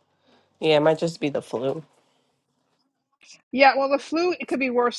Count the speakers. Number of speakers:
2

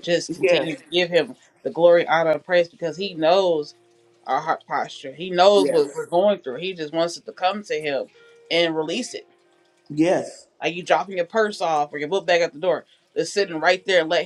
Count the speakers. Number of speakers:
2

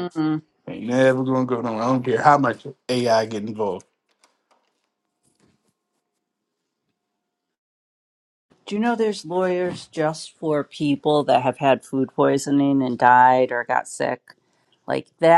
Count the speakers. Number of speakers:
2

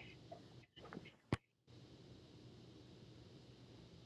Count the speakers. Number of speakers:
0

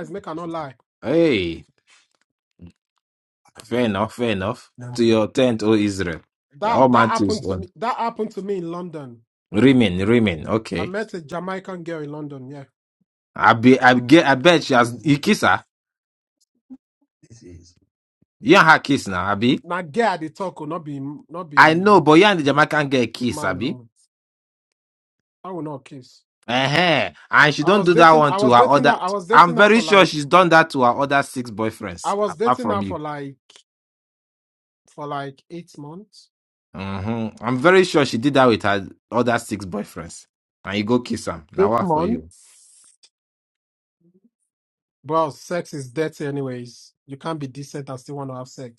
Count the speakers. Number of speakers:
2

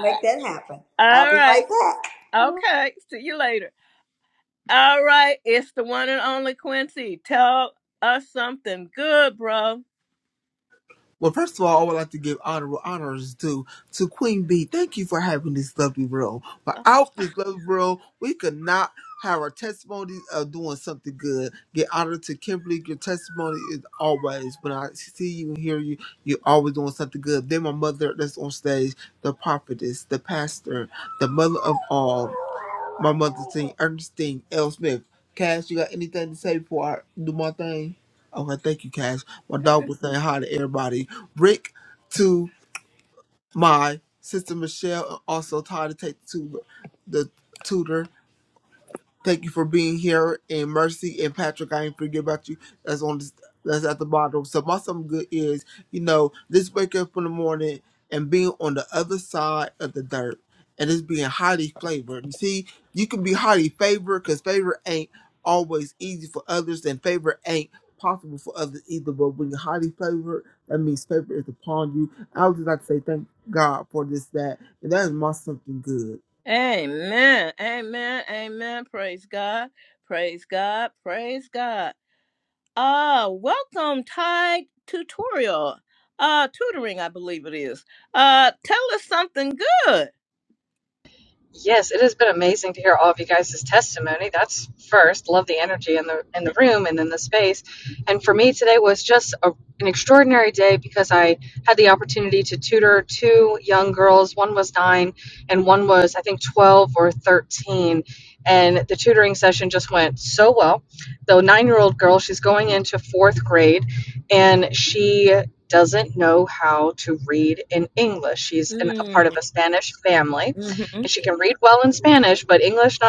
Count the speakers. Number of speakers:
4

